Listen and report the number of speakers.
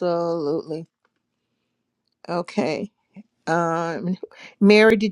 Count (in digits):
1